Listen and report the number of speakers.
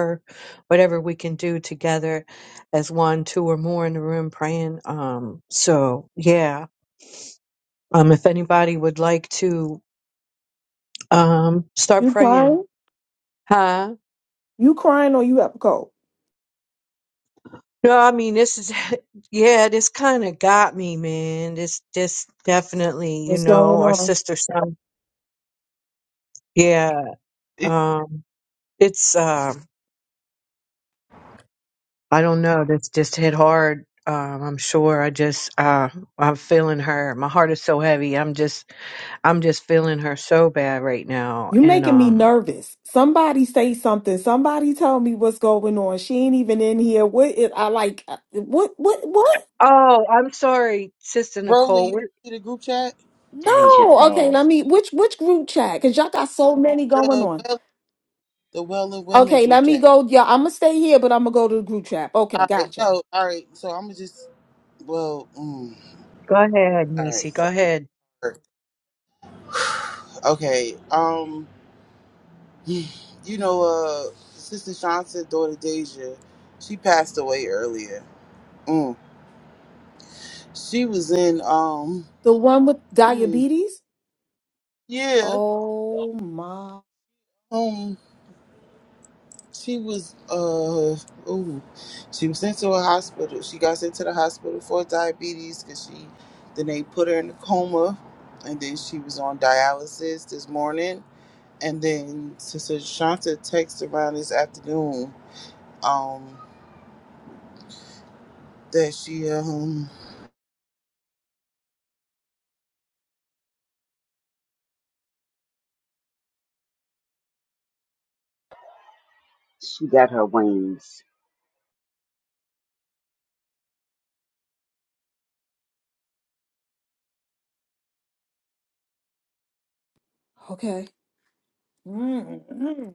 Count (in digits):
4